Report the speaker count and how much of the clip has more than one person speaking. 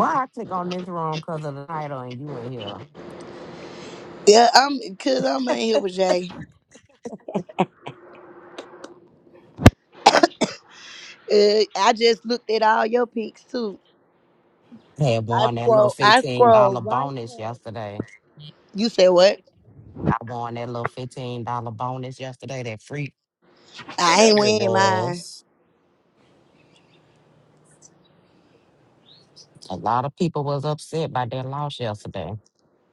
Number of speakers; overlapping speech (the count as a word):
two, about 10%